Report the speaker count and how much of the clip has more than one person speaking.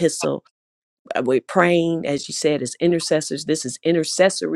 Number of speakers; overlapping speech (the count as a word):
one, no overlap